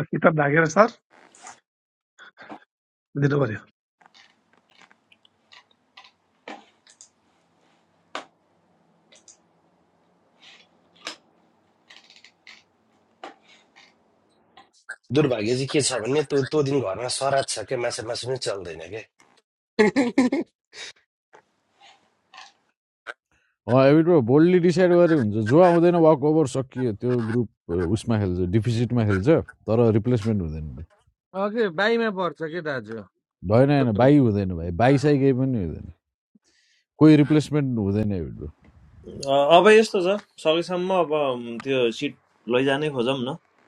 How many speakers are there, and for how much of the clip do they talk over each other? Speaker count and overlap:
5, no overlap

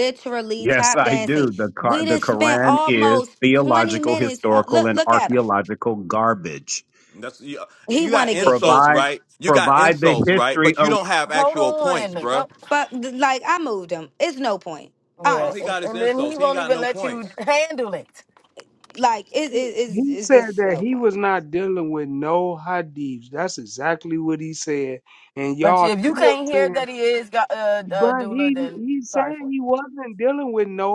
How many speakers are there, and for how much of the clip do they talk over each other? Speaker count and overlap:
5, about 45%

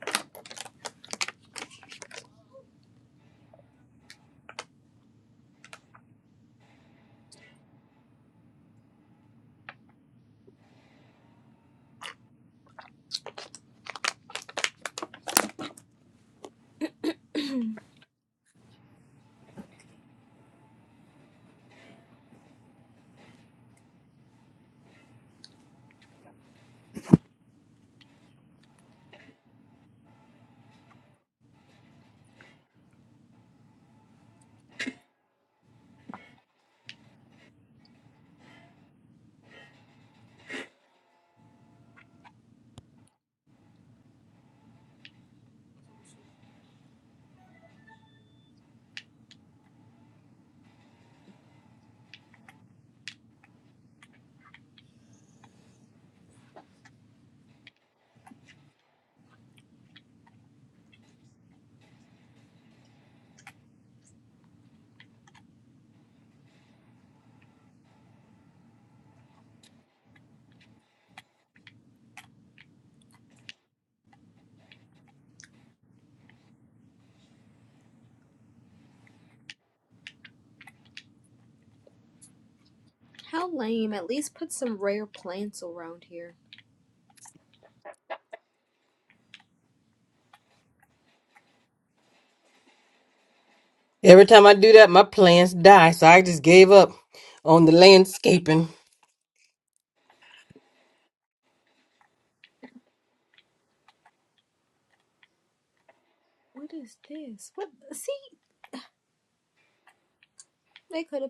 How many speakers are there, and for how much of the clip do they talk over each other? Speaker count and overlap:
2, no overlap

